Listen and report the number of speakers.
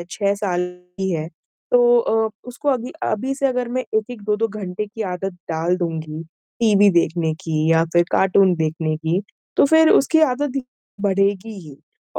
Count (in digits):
1